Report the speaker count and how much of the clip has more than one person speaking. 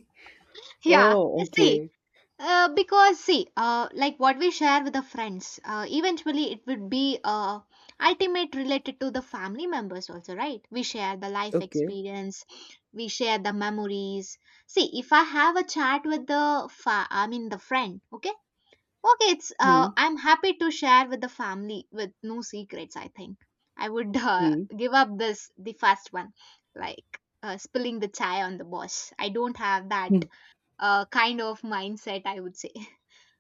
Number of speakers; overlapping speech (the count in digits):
2, about 5%